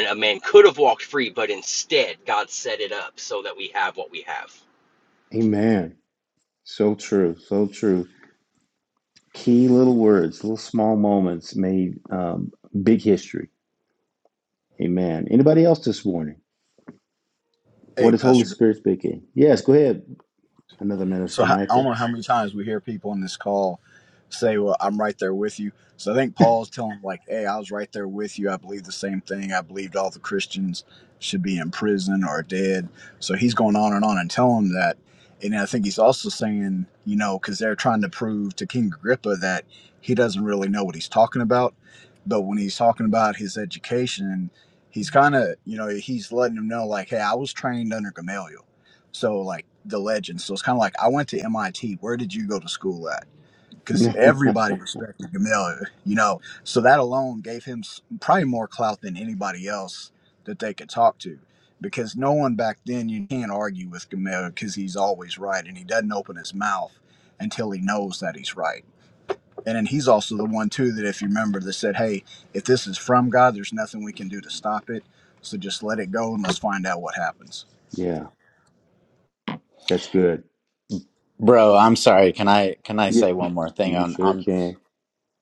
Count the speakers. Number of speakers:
4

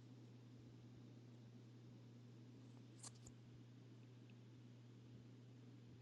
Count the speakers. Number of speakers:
0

